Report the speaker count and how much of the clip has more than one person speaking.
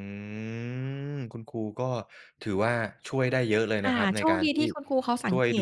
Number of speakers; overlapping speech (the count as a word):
two, about 21%